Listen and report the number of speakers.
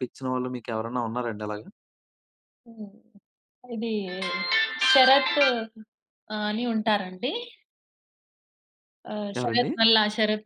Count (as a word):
two